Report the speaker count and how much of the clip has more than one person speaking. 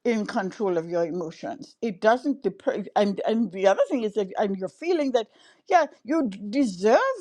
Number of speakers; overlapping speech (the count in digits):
1, no overlap